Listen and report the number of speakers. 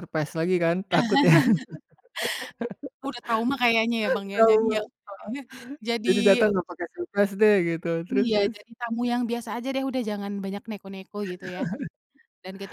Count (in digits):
2